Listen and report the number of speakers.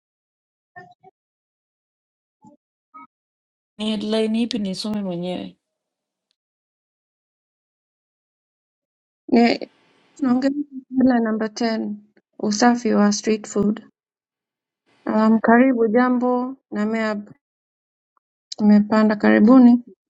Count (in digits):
2